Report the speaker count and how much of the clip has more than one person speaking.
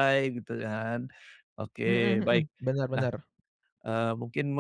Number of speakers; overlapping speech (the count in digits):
2, about 15%